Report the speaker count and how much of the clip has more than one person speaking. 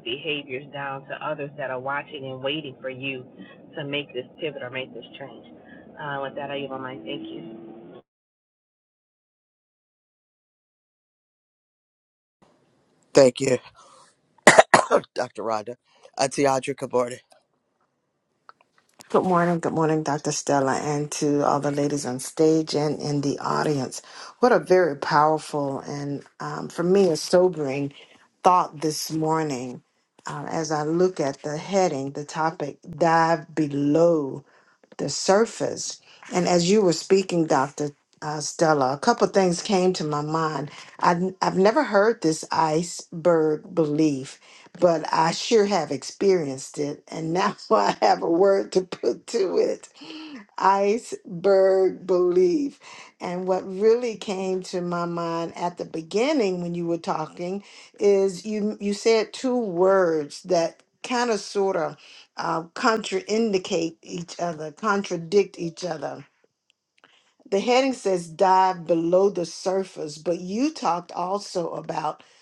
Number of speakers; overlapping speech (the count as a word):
three, no overlap